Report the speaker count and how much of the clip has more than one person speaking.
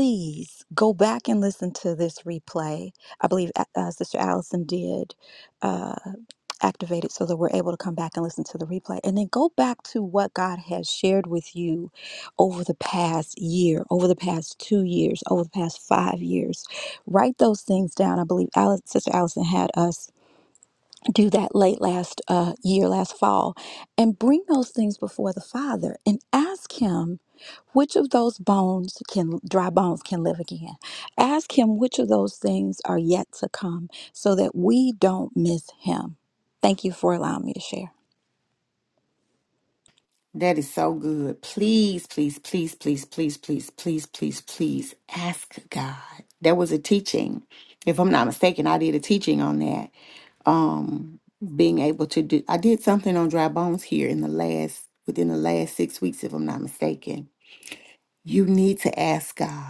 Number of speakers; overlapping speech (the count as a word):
two, no overlap